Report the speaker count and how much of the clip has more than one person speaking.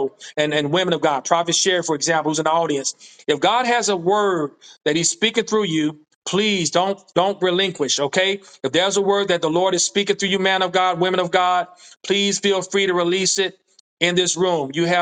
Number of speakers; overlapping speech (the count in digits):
1, no overlap